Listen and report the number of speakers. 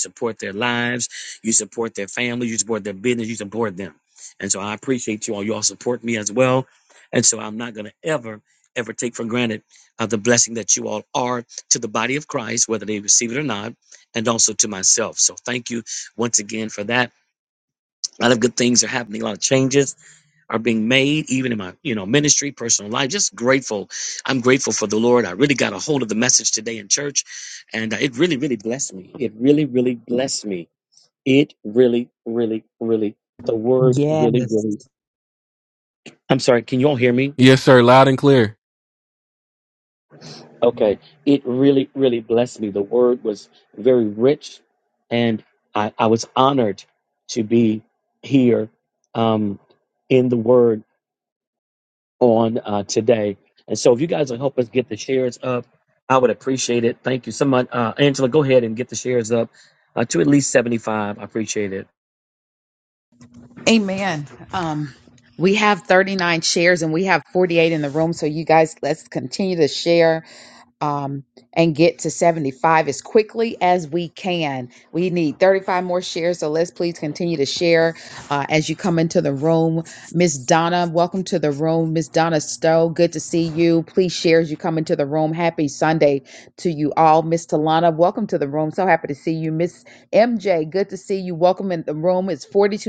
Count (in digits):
3